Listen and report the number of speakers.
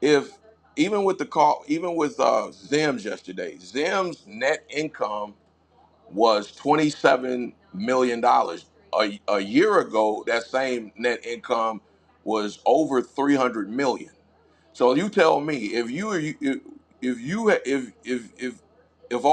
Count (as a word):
one